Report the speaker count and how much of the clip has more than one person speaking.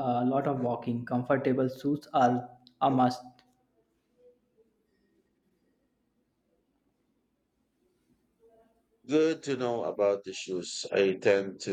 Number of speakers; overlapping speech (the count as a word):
two, no overlap